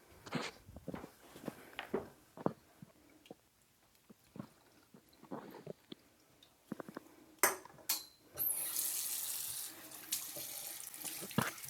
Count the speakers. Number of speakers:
zero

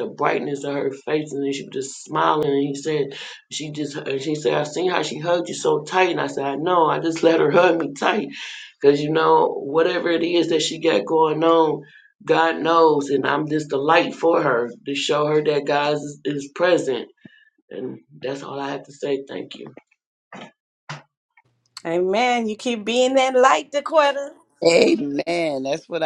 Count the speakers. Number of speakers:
three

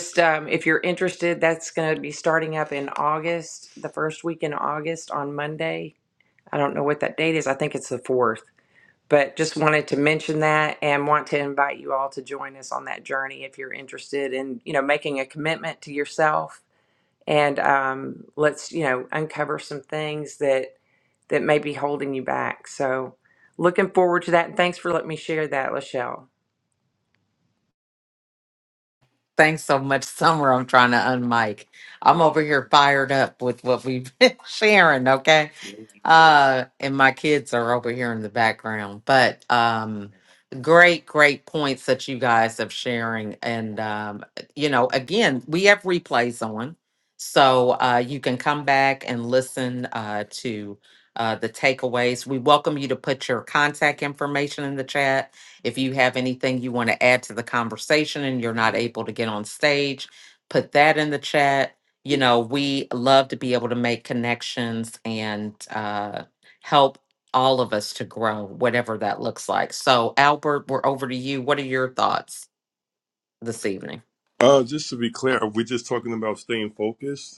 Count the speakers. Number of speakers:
three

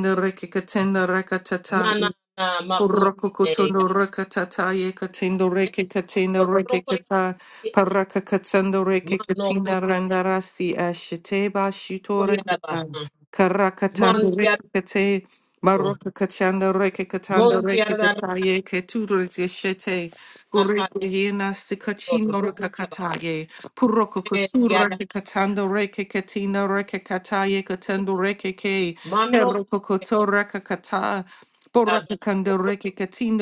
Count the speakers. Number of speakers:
two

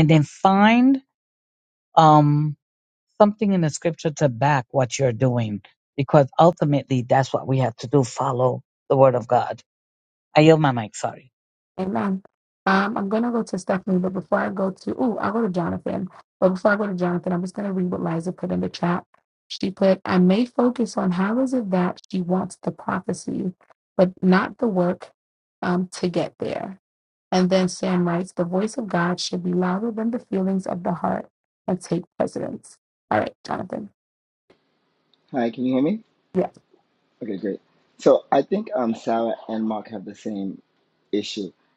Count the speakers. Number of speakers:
three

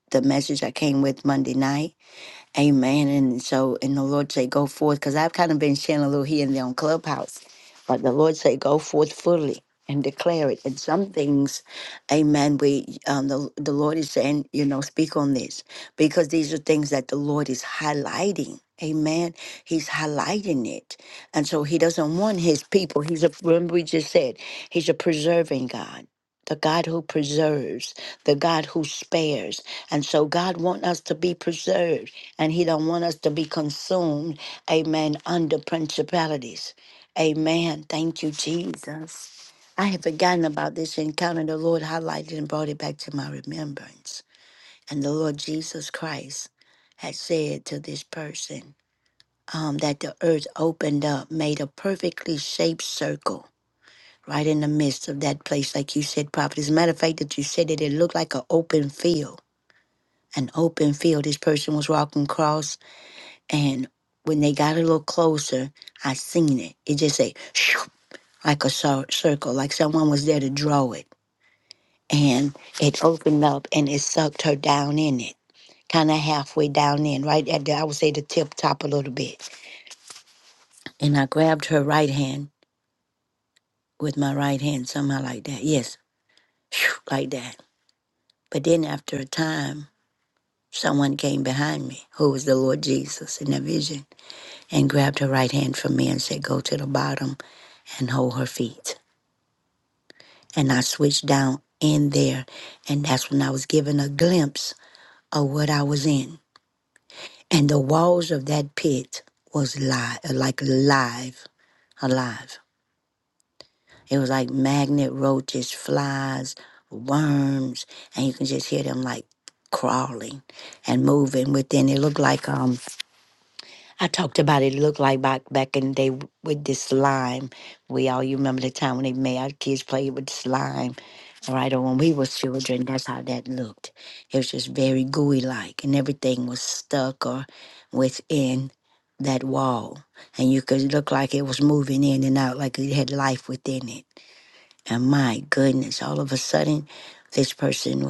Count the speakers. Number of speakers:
one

